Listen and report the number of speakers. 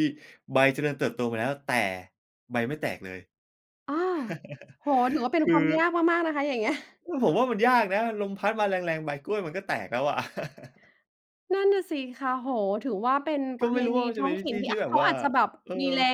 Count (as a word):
two